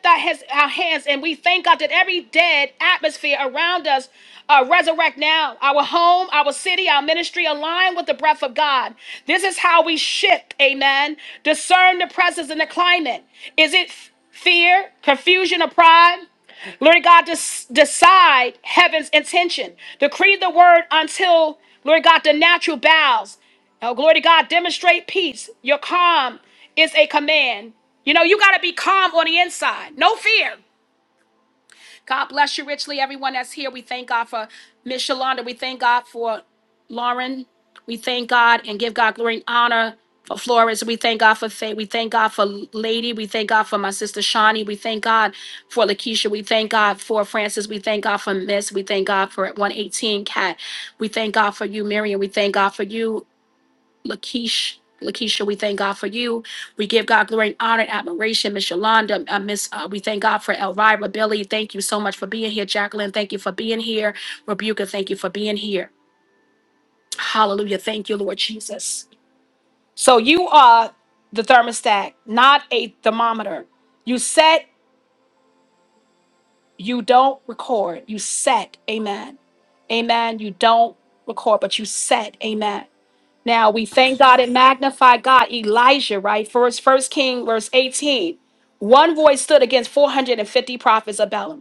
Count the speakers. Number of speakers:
1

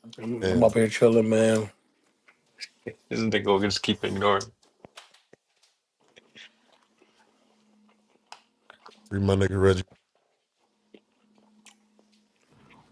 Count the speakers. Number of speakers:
3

